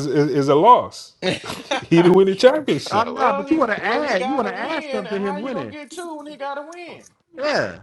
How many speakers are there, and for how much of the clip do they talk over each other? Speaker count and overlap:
3, about 39%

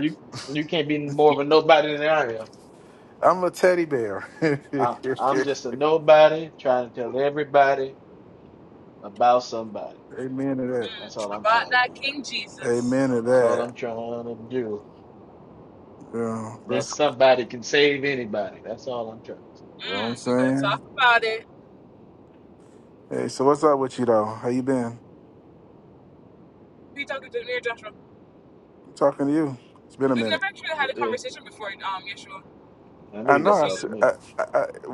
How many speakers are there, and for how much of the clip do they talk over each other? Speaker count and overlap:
3, about 13%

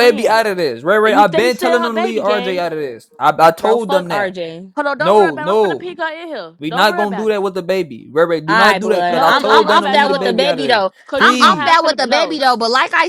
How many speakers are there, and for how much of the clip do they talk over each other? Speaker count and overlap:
3, about 60%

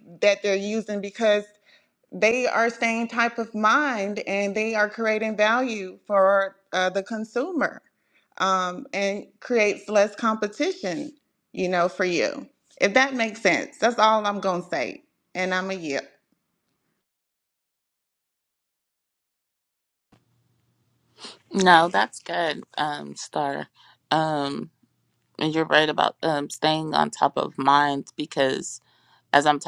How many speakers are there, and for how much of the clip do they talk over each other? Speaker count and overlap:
2, no overlap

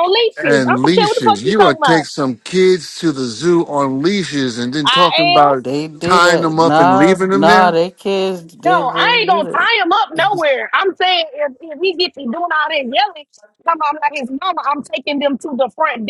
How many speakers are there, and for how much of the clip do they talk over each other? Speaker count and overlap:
3, about 33%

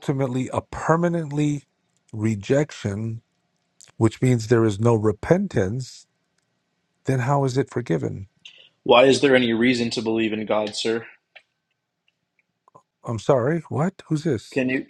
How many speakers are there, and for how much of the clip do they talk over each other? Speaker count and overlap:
2, no overlap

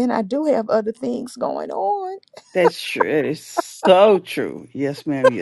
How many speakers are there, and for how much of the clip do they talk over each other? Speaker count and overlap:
2, no overlap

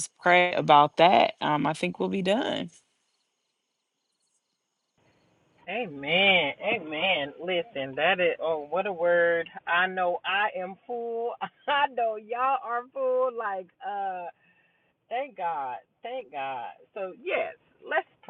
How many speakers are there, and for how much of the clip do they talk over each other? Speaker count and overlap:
2, no overlap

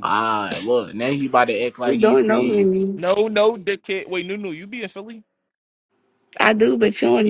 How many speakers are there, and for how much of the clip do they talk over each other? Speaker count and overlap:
3, about 14%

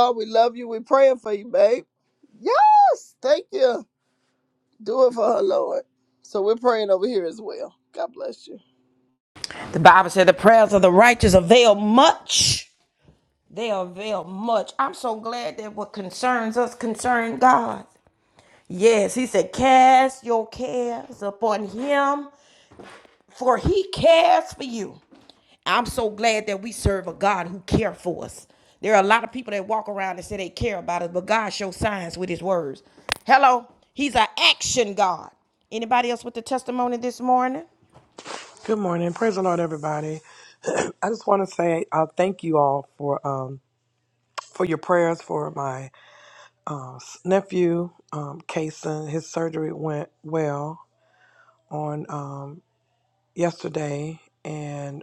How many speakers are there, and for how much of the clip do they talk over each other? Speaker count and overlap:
3, no overlap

